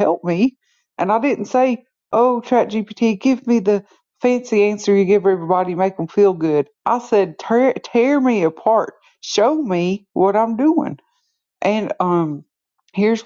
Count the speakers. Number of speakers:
one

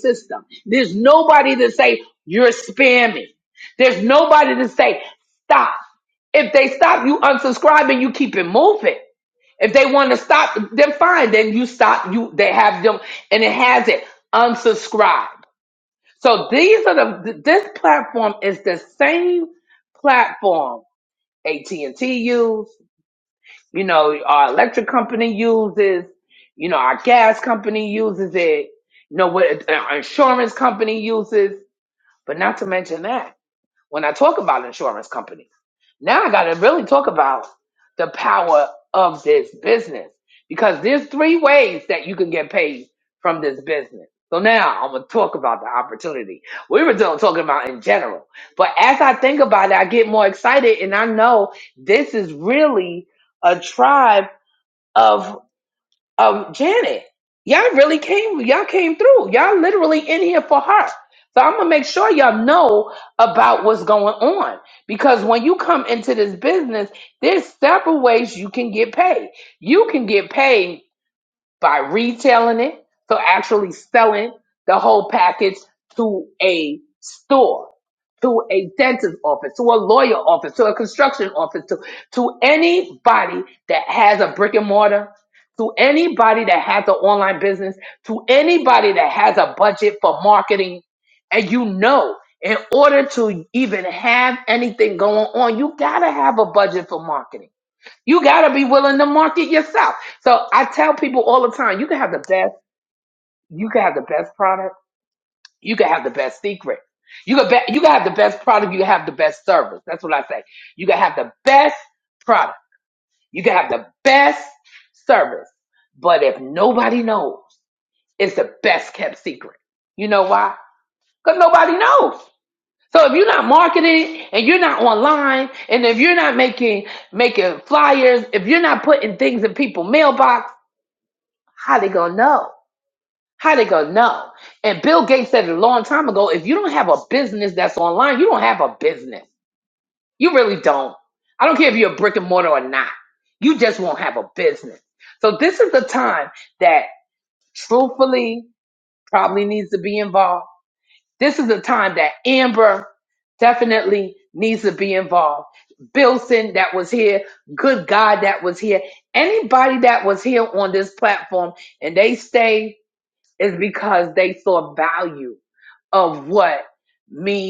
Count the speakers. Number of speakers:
one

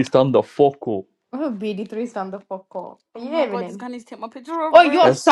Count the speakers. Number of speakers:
three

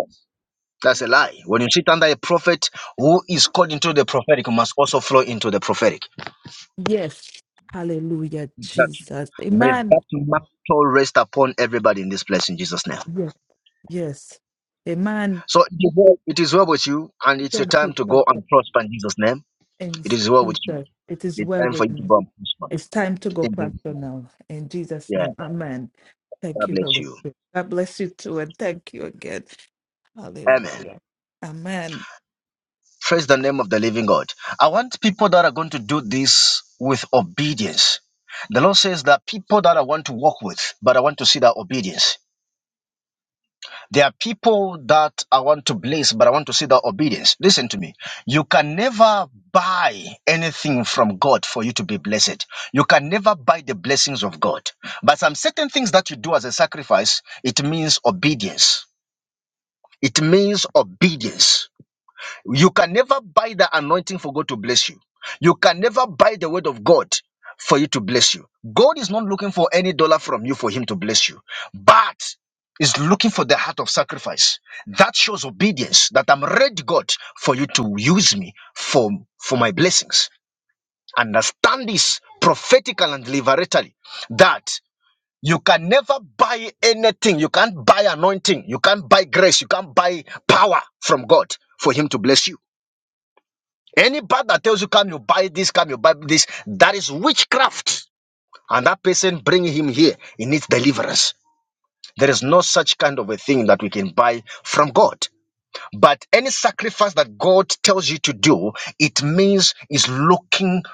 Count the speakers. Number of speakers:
two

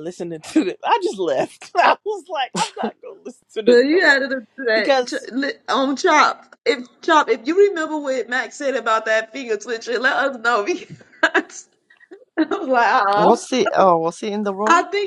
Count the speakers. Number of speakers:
three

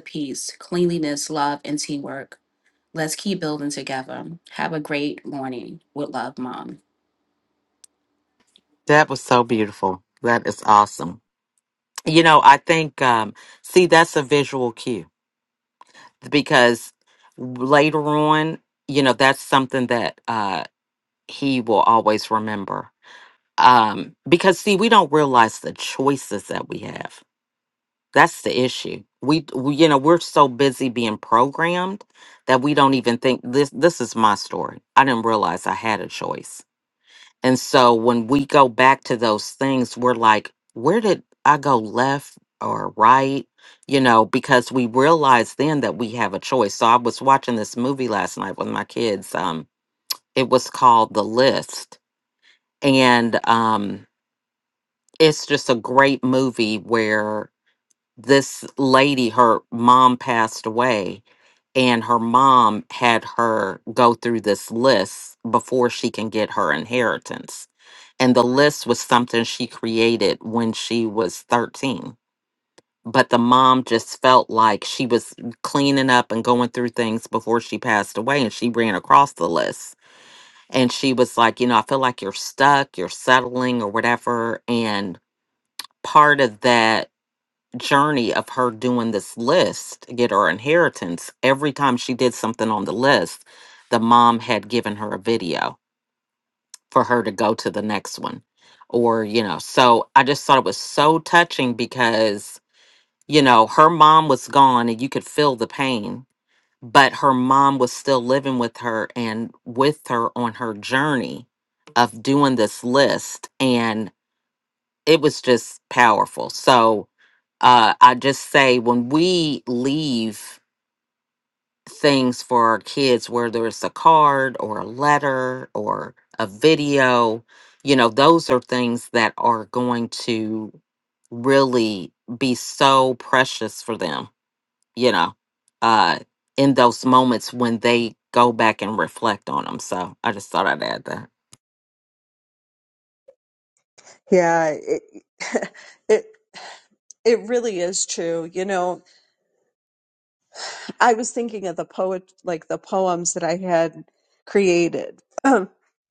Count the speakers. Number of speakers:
three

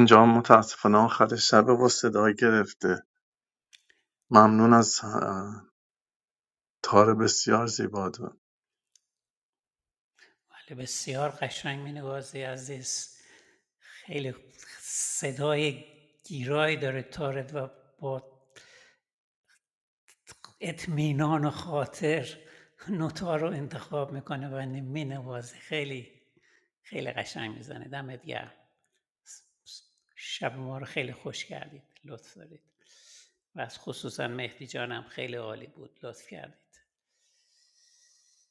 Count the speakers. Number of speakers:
two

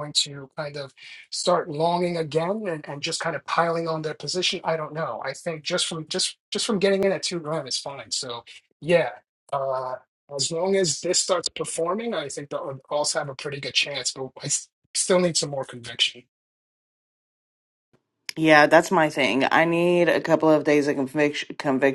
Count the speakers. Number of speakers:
two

